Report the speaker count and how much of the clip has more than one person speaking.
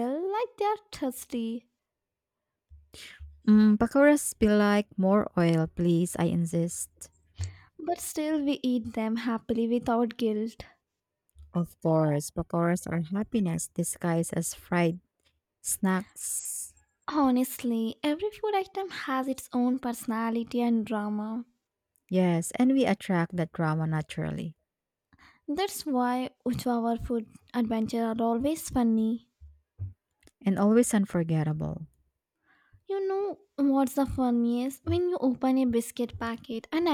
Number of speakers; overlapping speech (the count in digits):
2, no overlap